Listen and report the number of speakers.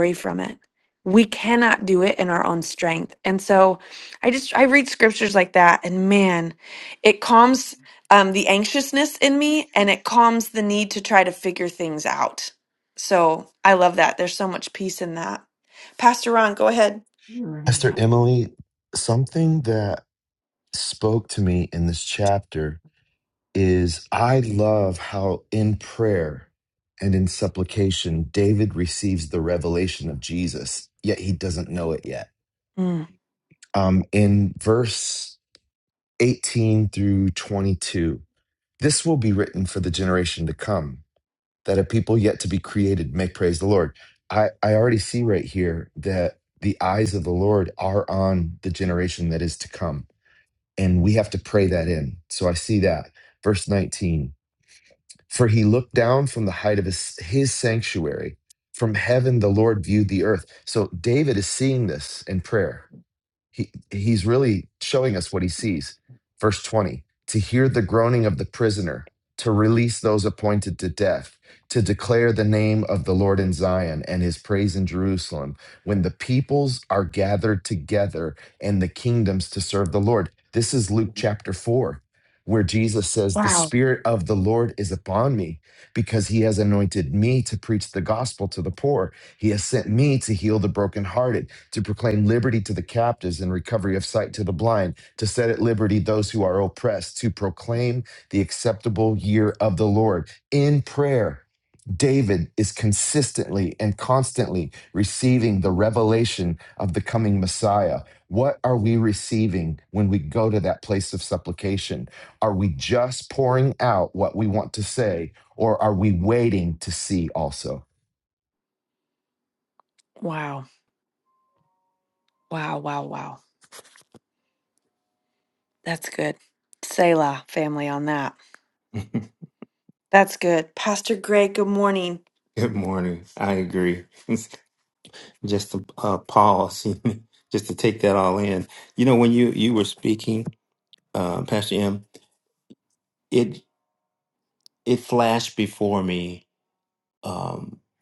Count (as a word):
three